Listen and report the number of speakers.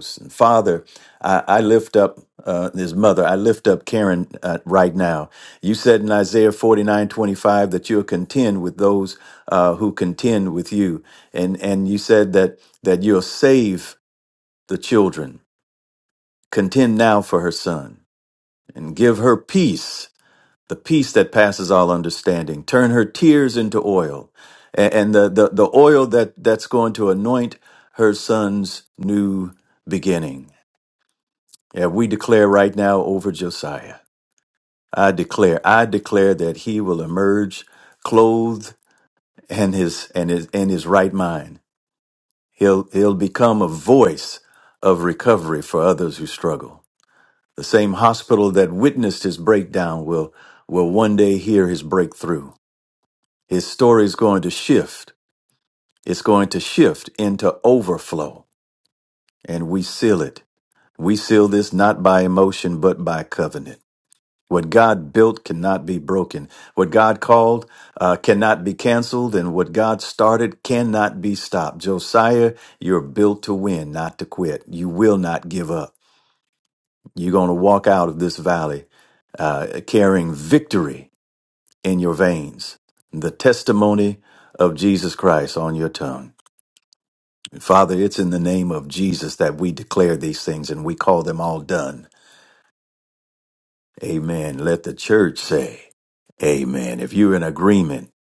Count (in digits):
1